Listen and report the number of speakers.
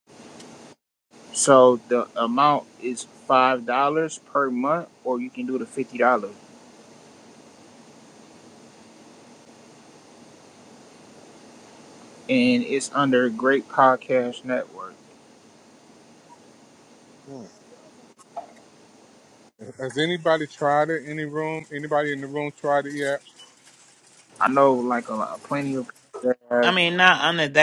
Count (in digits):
3